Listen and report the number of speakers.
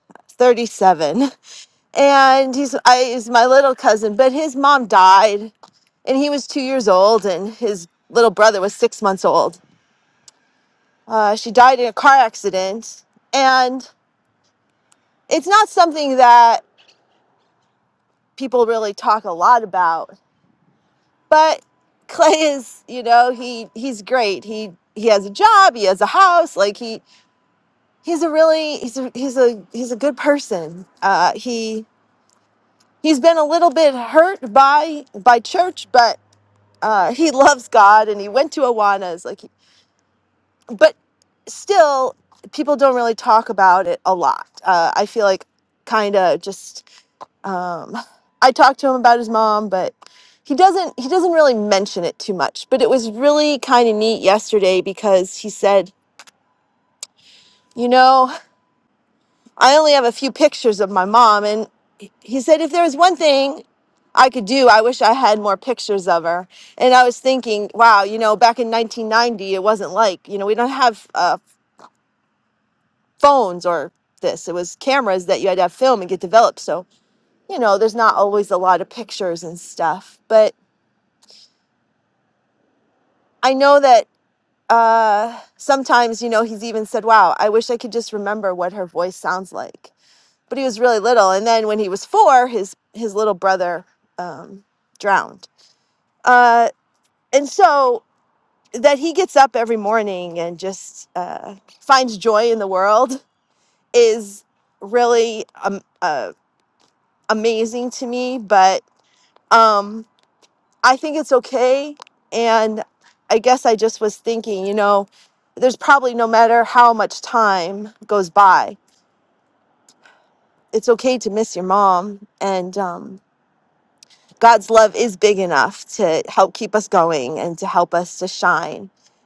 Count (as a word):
one